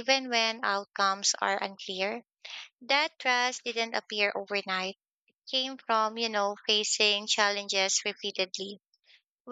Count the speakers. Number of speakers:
1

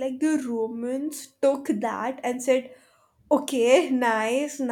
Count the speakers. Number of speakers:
1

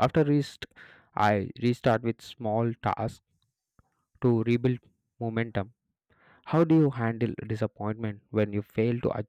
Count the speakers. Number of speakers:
1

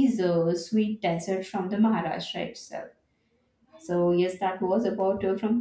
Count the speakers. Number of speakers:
1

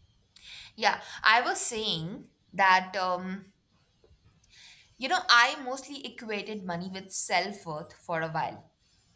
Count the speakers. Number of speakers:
1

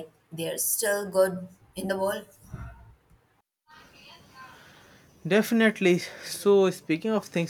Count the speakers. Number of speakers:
2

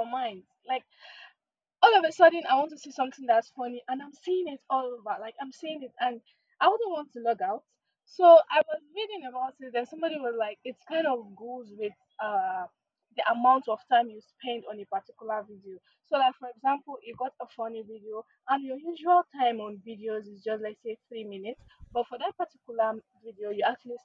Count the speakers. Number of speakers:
1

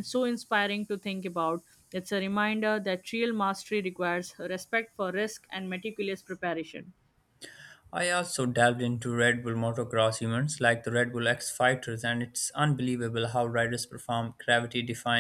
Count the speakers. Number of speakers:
2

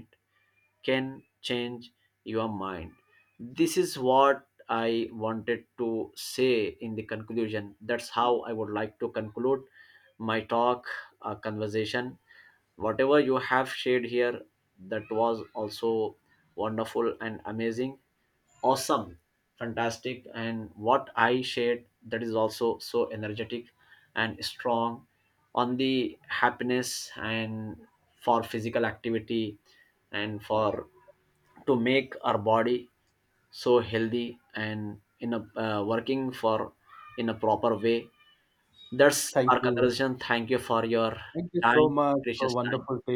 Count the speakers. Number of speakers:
2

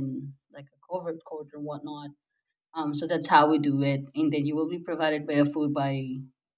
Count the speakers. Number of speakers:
1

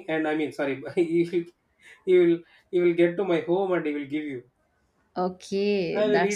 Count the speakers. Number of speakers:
2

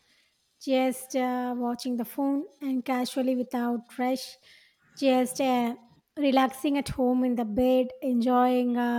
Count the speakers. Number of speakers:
1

